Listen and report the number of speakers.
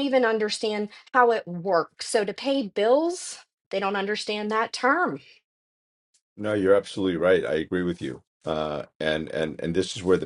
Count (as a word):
two